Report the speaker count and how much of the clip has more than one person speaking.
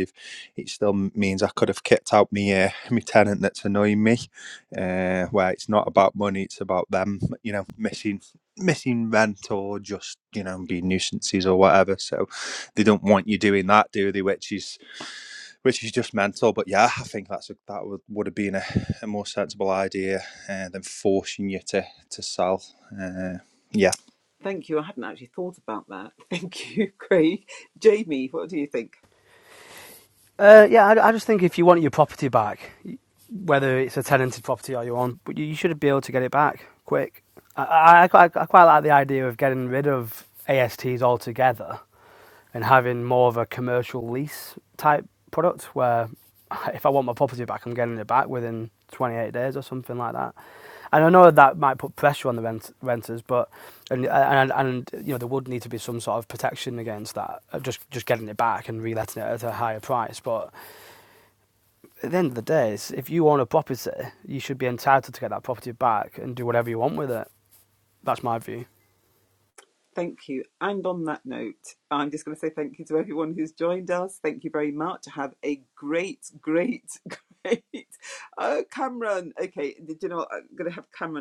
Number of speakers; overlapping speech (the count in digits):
3, no overlap